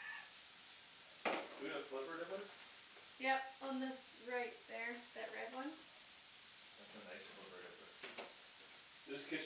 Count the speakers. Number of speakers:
two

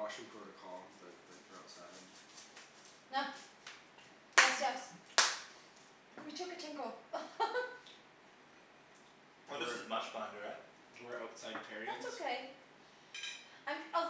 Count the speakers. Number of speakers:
four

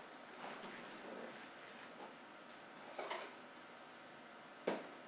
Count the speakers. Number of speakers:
zero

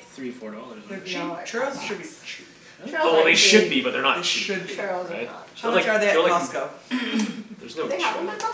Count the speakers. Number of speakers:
four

